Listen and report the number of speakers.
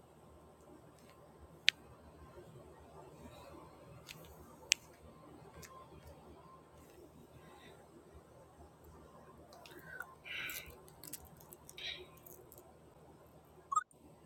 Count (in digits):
0